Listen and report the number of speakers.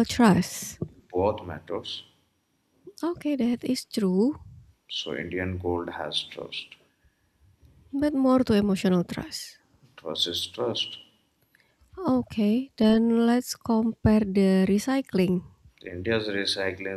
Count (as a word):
two